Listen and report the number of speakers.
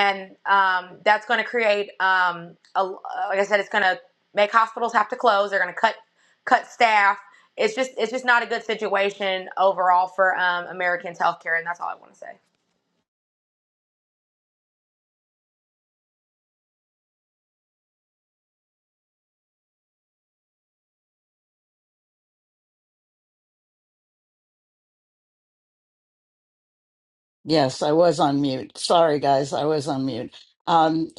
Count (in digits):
2